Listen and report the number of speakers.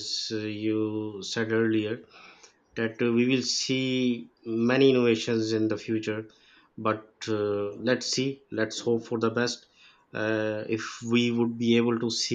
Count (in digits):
1